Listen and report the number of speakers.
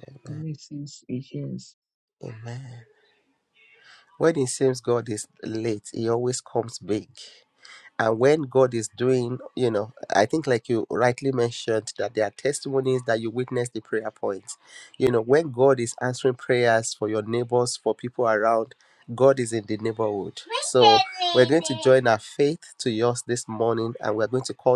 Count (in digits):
2